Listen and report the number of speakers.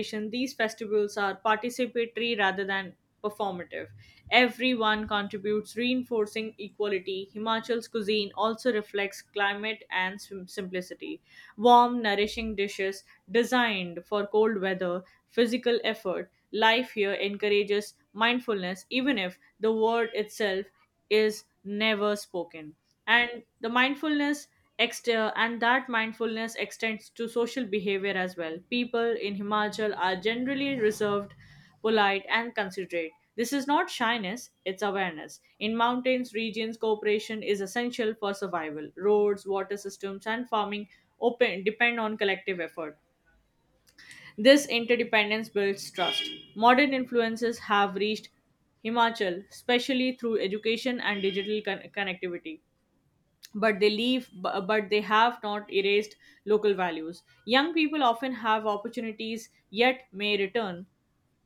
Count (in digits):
1